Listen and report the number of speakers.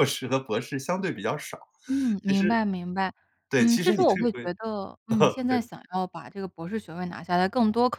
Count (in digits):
2